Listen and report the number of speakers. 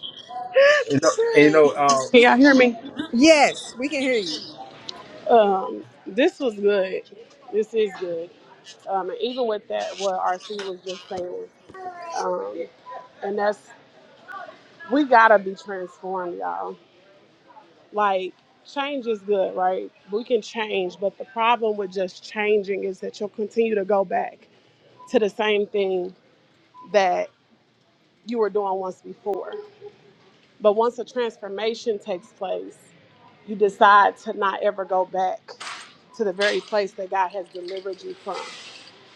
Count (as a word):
three